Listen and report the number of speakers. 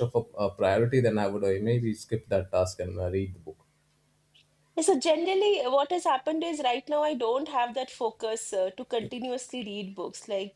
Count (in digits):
2